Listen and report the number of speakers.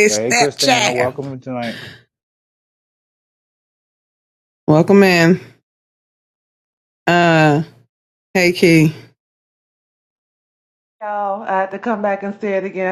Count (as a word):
three